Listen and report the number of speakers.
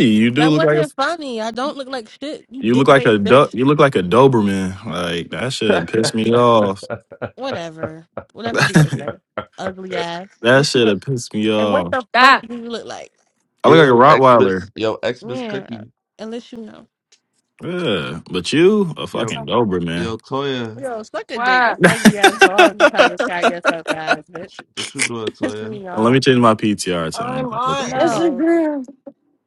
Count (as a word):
four